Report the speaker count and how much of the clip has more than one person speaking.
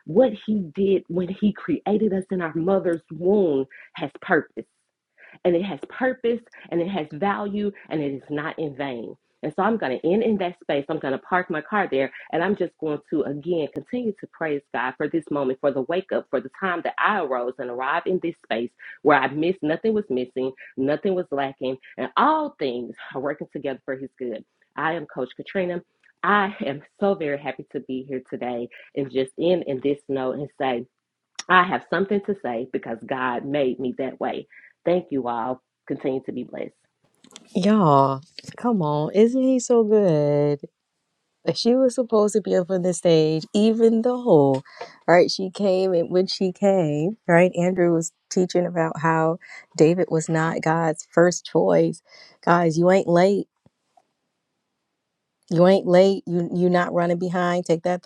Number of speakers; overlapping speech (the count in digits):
2, no overlap